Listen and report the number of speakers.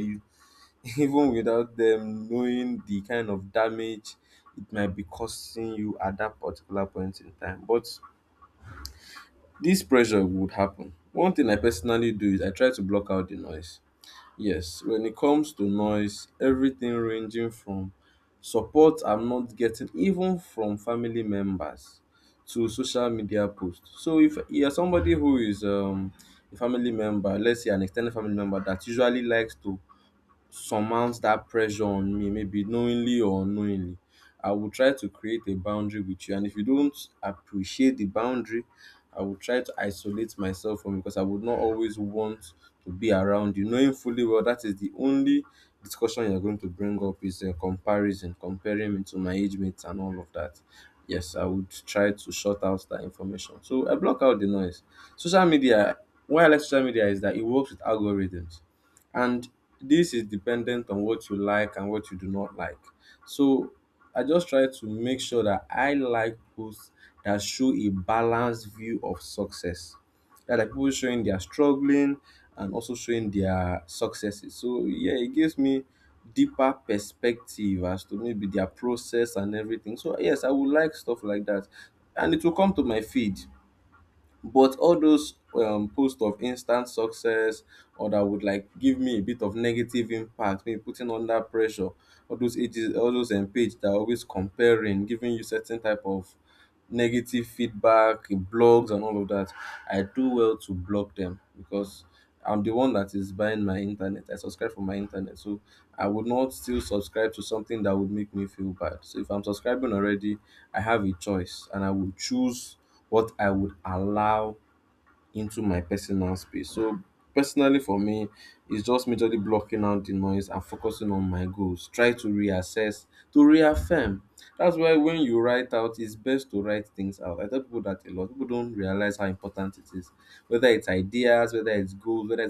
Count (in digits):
1